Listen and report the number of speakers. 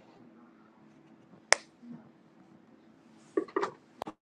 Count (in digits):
0